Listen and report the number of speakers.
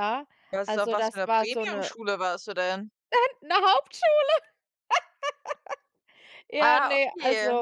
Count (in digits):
2